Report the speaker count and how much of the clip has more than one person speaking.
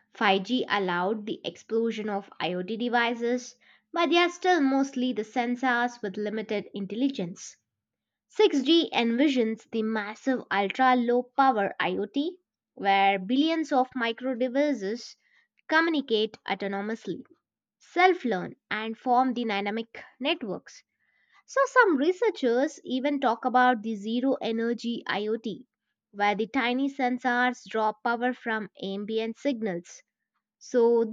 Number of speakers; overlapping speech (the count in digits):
1, no overlap